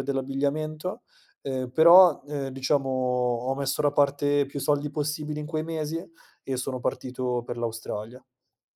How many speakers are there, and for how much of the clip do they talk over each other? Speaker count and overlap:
one, no overlap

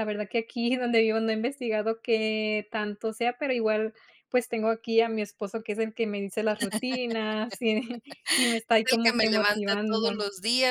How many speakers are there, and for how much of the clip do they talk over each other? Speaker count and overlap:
two, about 15%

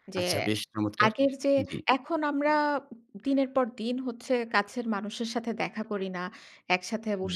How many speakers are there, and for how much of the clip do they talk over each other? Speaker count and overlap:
two, about 4%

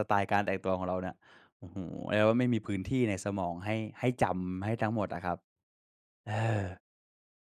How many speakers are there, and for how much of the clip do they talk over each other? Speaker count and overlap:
one, no overlap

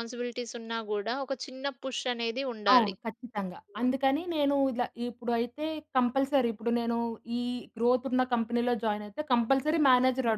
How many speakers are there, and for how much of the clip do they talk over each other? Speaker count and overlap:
two, about 4%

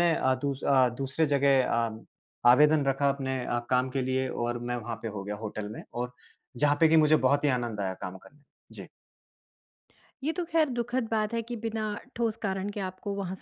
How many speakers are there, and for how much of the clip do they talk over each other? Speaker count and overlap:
two, no overlap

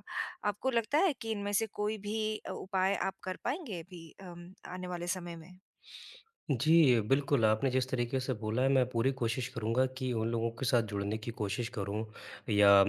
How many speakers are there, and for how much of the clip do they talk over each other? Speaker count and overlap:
two, no overlap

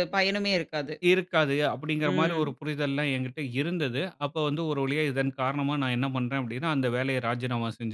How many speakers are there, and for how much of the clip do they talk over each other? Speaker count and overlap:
two, about 6%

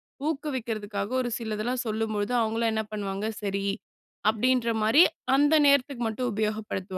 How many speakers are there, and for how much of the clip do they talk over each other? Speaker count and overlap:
one, no overlap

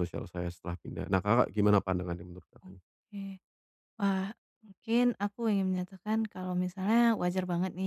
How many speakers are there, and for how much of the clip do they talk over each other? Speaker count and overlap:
two, under 1%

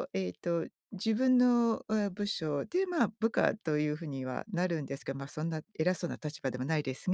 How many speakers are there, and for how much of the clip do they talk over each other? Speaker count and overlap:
one, no overlap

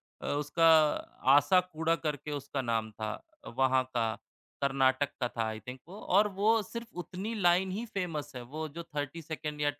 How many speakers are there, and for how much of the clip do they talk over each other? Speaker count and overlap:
one, no overlap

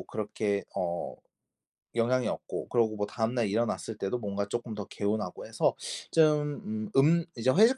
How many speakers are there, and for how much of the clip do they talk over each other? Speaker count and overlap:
one, no overlap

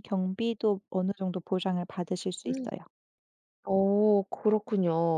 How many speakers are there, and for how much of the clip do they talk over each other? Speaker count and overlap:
two, no overlap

